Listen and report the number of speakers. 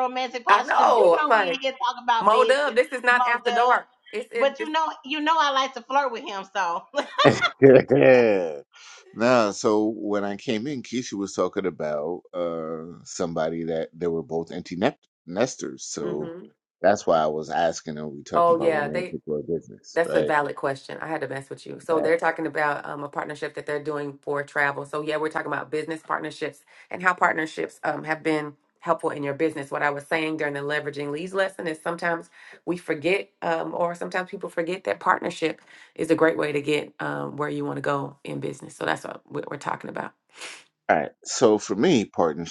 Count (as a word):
three